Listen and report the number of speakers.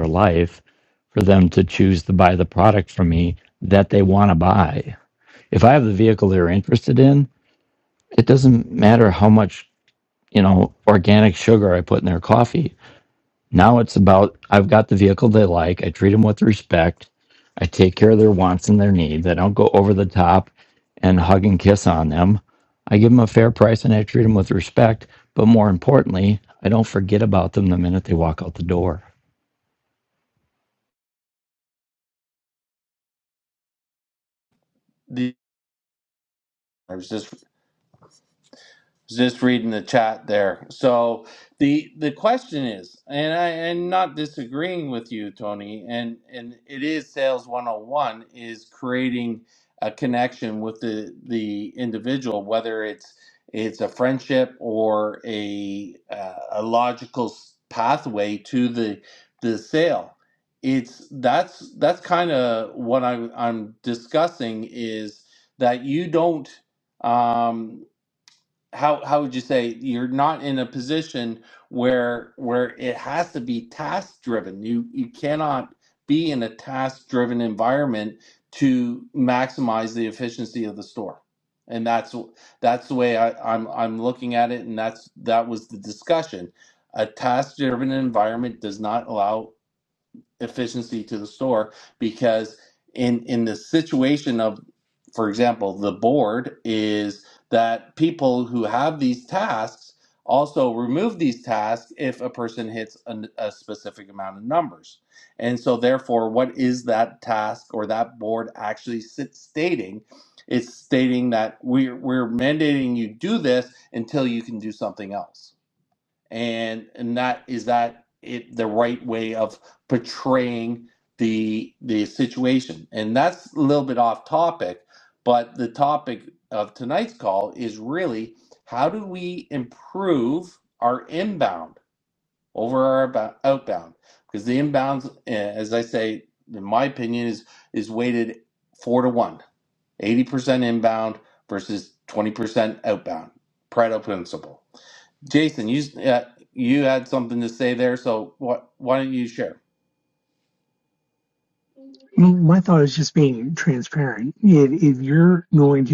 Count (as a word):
three